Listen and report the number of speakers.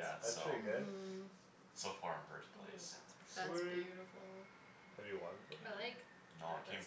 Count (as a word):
four